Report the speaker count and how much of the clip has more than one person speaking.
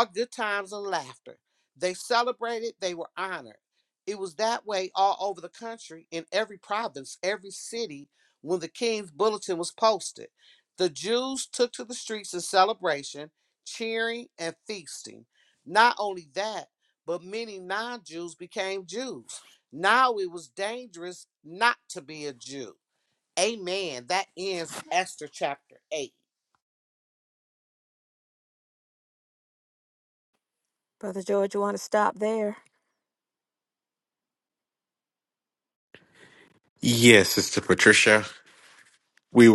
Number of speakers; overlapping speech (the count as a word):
three, no overlap